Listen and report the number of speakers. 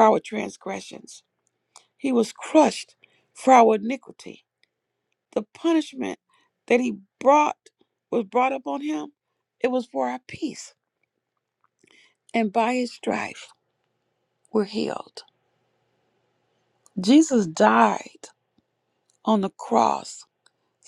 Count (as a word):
one